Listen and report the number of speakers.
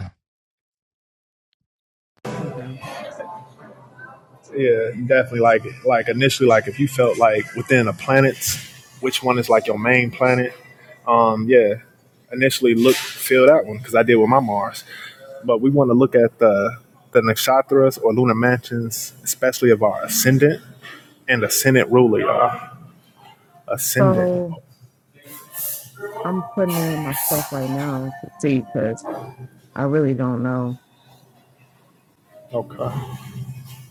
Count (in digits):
2